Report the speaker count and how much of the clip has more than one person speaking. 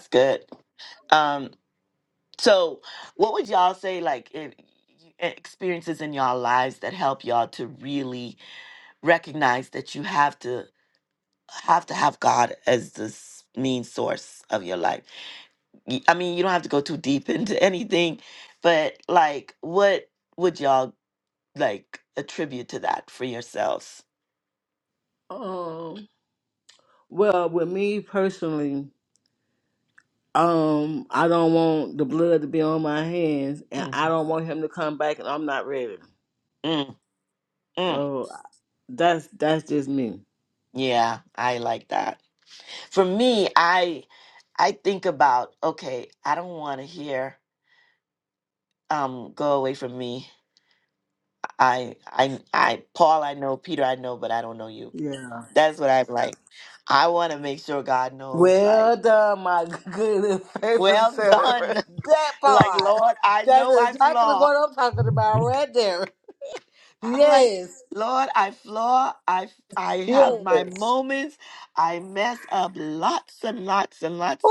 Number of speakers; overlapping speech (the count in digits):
2, about 6%